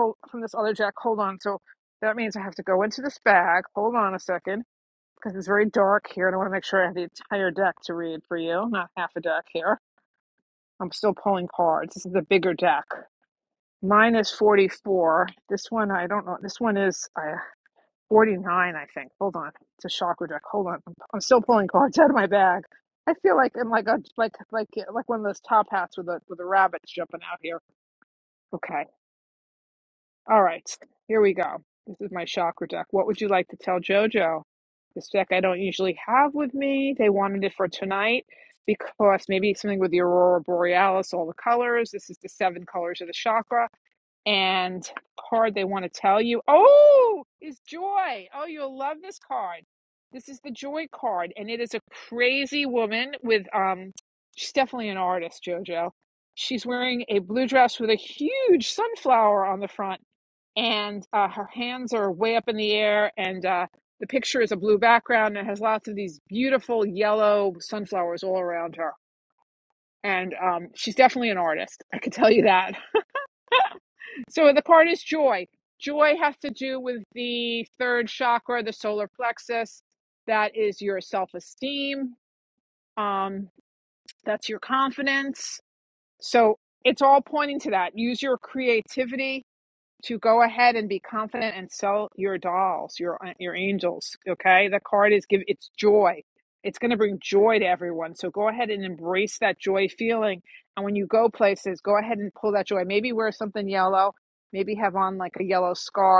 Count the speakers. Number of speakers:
one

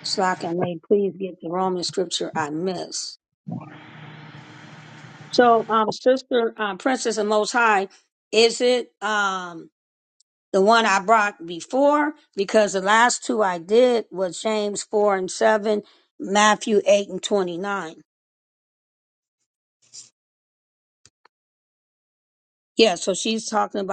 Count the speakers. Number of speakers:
one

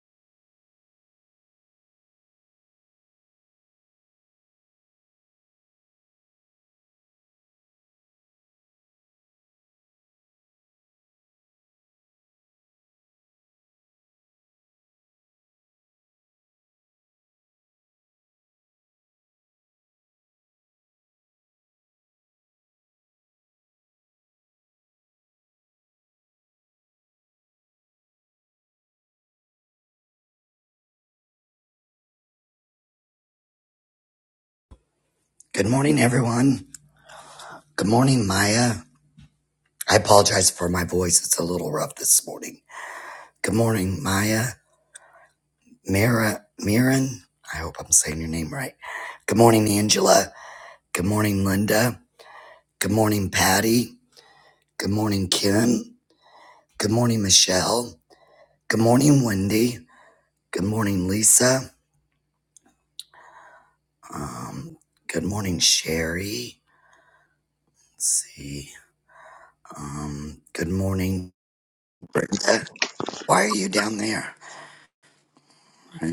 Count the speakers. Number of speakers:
one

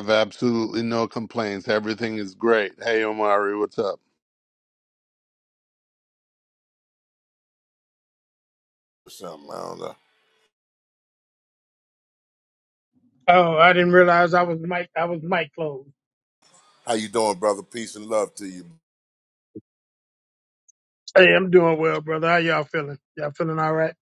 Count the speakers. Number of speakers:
three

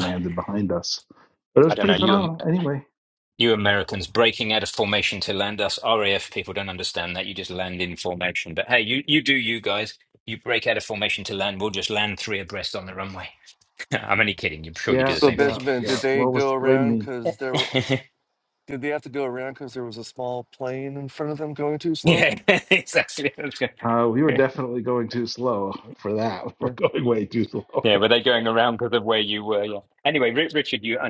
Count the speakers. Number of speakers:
three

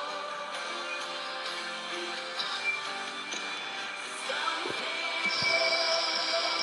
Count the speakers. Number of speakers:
zero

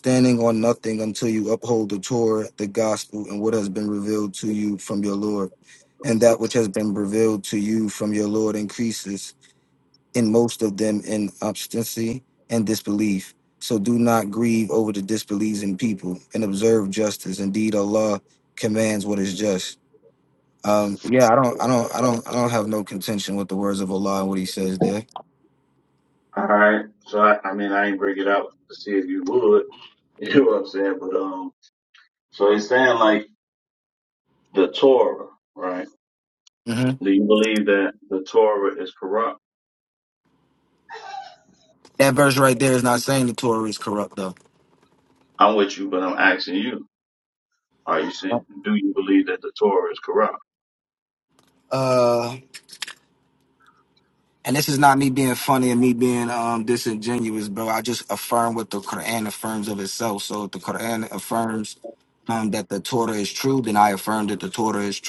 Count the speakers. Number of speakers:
two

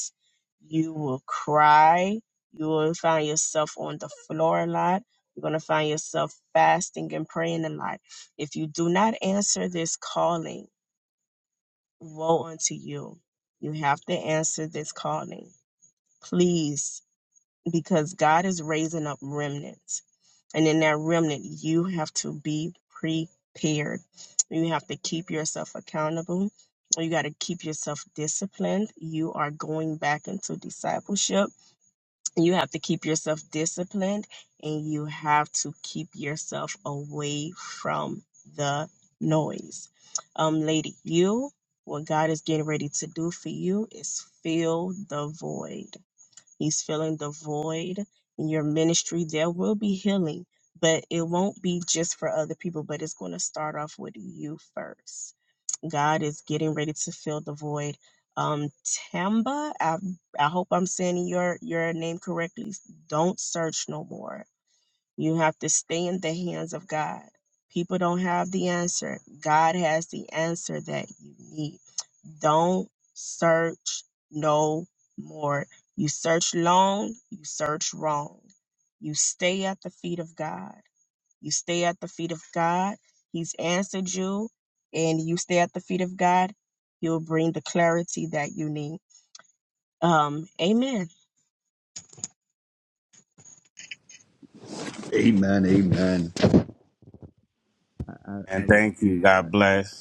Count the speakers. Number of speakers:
three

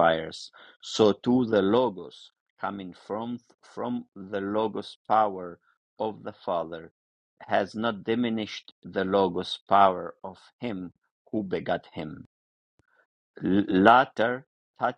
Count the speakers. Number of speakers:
one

